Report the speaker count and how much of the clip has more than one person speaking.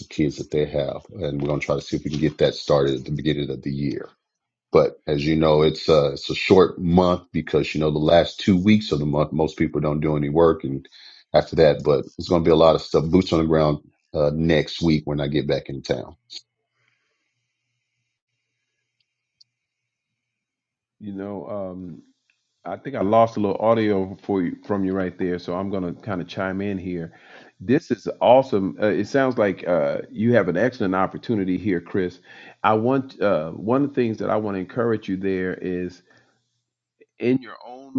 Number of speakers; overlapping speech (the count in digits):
2, no overlap